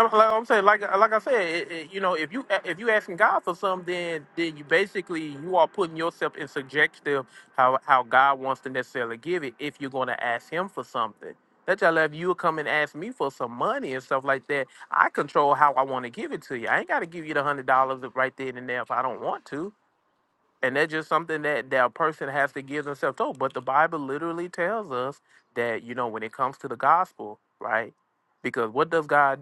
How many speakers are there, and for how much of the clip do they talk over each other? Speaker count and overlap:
one, no overlap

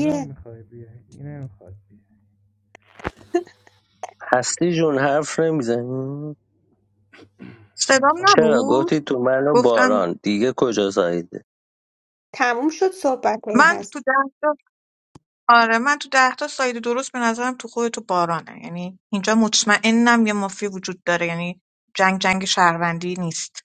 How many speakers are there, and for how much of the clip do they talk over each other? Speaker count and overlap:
four, about 9%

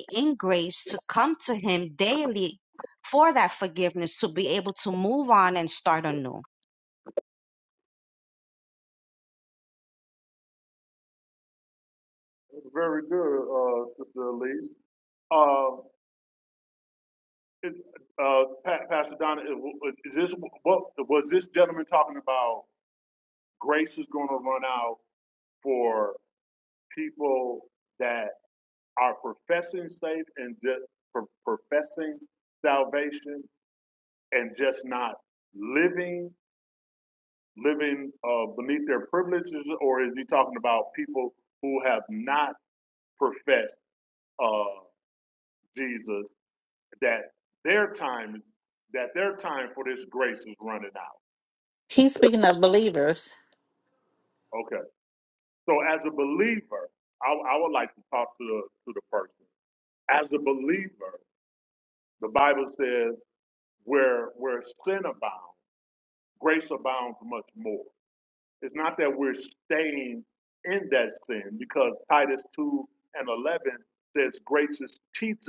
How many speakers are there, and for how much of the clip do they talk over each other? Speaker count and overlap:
three, no overlap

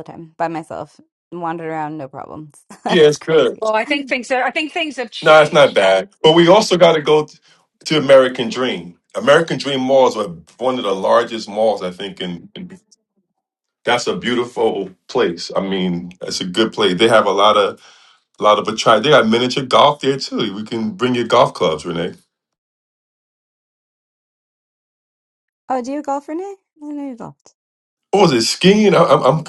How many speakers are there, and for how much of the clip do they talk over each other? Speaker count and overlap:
three, about 4%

